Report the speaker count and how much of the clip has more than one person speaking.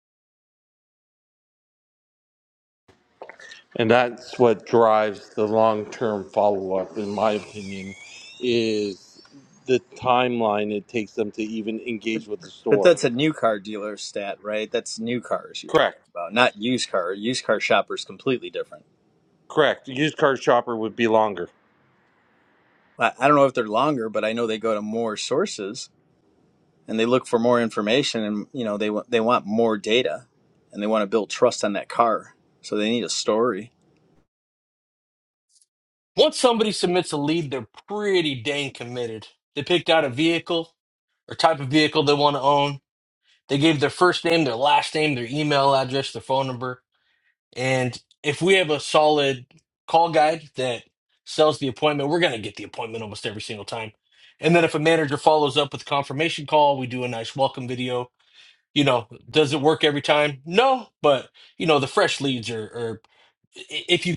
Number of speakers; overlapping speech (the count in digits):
3, about 1%